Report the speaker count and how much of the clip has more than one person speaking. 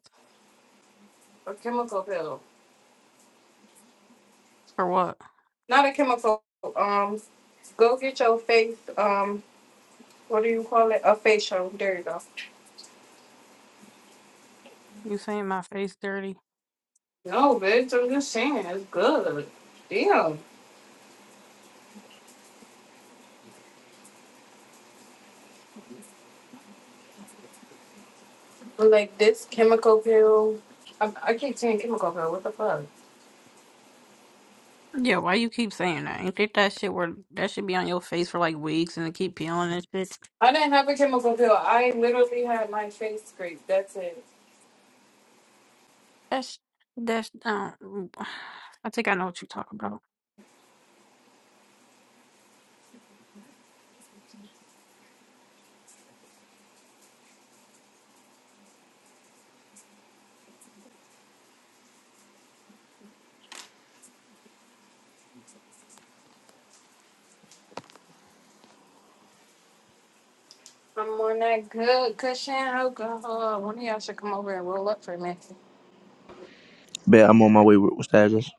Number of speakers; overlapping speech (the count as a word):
three, no overlap